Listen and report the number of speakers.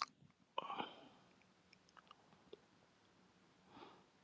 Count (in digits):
0